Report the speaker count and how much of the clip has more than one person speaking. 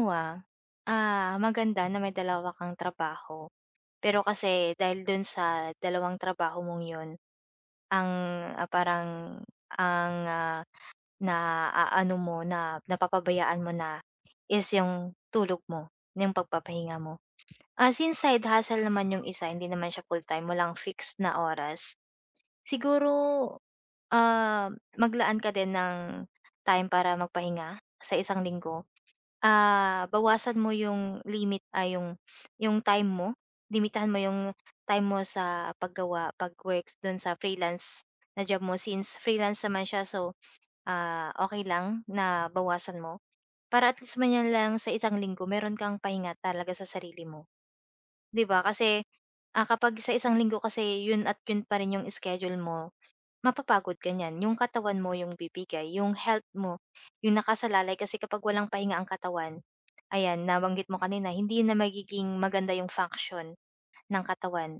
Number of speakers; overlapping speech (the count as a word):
one, no overlap